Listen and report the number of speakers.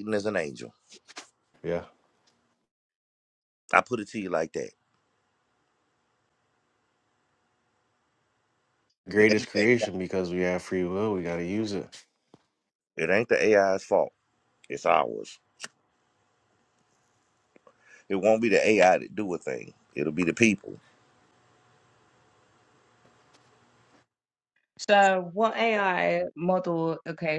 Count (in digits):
3